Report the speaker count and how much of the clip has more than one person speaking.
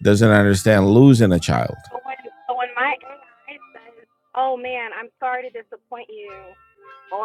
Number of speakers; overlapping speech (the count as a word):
two, no overlap